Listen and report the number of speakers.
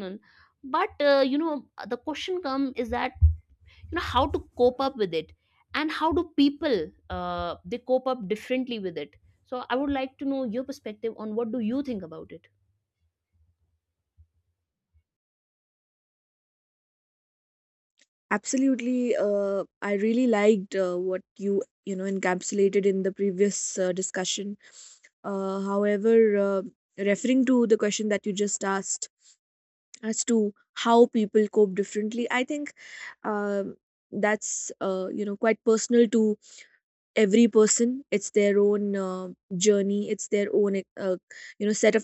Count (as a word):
two